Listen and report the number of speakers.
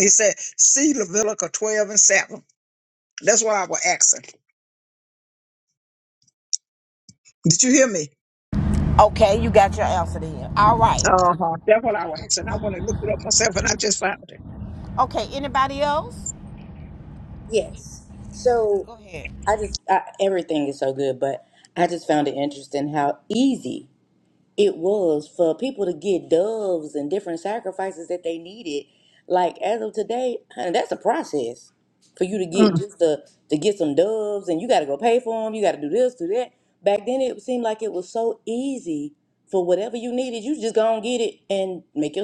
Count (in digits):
3